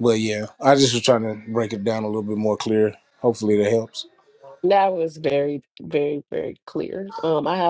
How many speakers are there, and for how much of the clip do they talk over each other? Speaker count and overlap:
two, no overlap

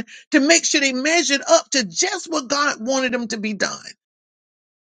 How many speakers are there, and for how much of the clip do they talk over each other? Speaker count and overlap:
one, no overlap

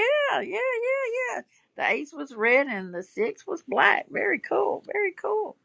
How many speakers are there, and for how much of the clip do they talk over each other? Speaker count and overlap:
one, no overlap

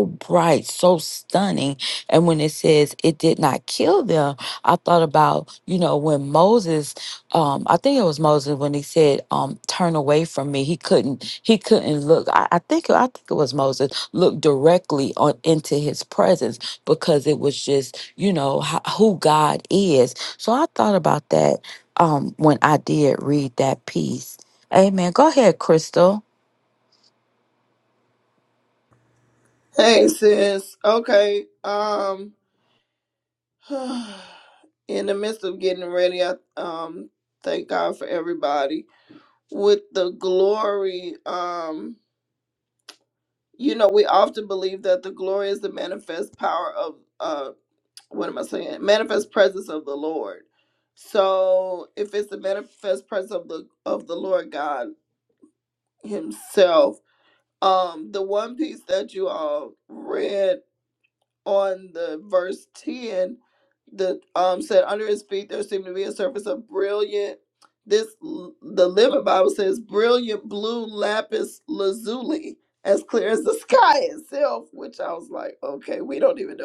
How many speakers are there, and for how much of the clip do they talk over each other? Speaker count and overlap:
two, no overlap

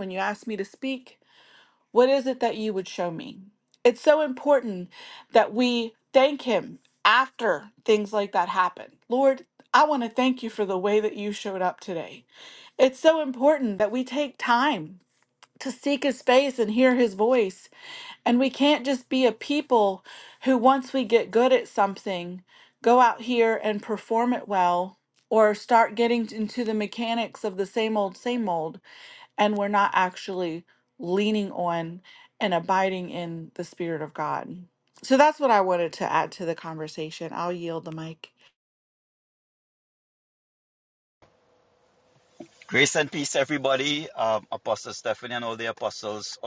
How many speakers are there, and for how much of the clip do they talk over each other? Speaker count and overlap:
two, no overlap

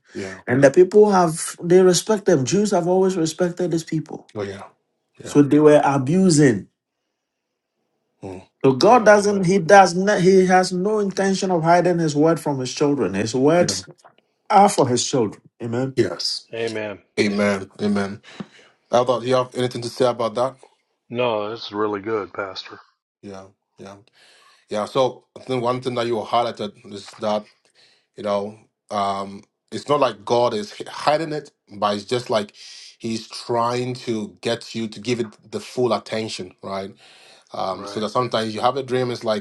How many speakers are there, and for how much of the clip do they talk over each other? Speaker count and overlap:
three, about 4%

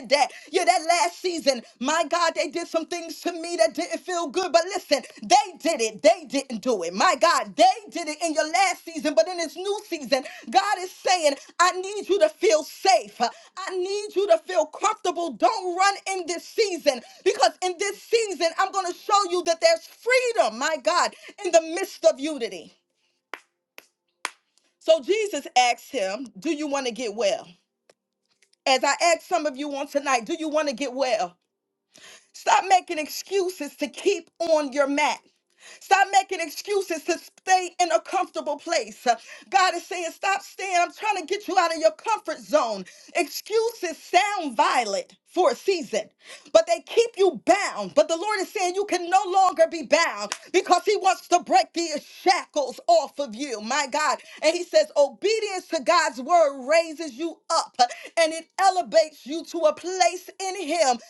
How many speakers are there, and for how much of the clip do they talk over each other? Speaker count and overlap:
one, no overlap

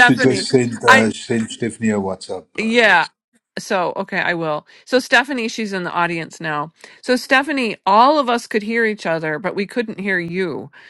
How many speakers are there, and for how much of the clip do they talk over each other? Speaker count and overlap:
two, about 11%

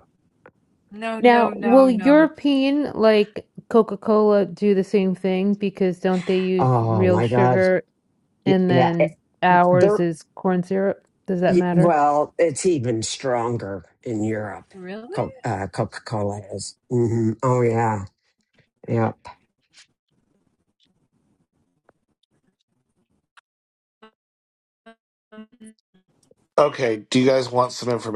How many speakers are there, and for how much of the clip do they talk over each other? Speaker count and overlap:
four, about 13%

